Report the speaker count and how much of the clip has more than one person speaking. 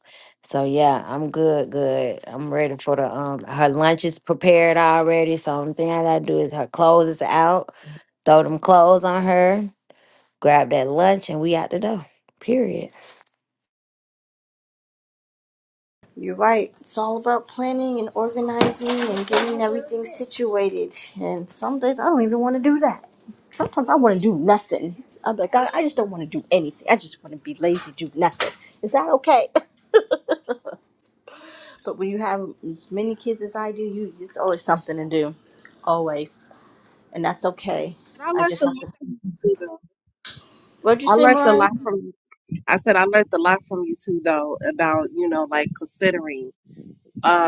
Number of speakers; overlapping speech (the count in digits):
3, about 2%